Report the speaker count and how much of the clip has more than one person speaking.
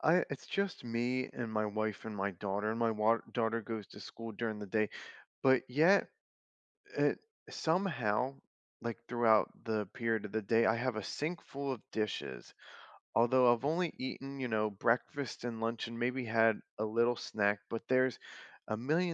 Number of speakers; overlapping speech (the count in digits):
1, no overlap